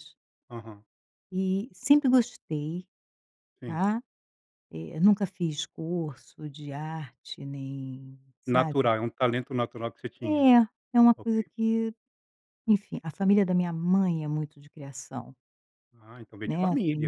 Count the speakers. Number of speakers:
2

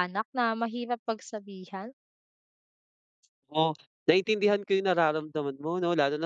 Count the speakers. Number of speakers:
2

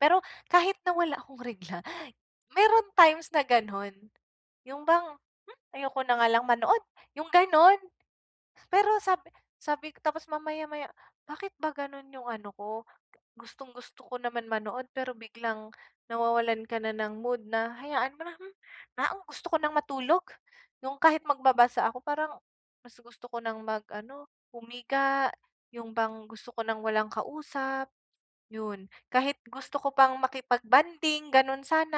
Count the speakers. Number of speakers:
1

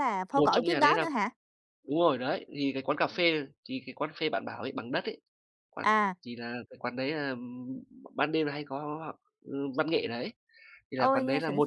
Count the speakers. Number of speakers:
2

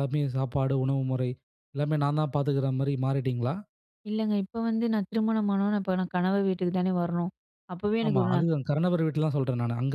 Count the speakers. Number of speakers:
2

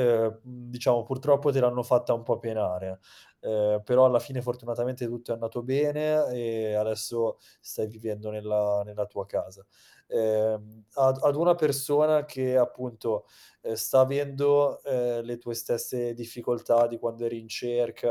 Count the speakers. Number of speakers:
1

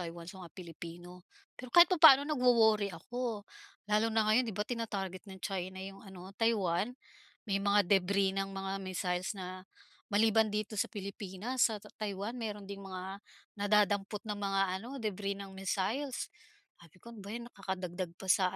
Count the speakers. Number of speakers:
1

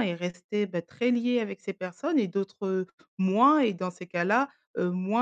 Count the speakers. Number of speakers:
1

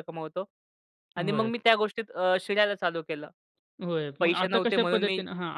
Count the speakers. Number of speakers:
2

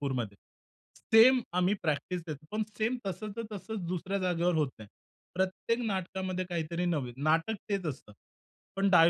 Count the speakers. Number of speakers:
1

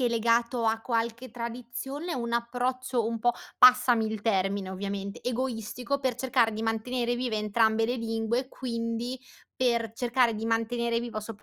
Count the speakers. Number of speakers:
1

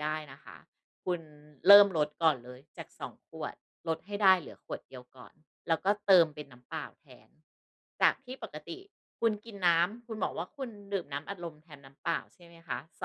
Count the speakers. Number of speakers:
1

